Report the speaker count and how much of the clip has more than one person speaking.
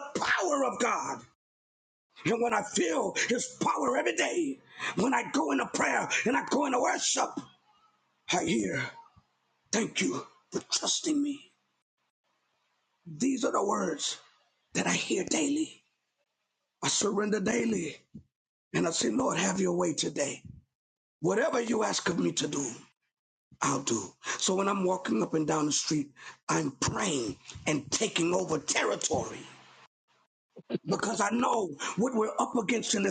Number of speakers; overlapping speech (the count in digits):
1, no overlap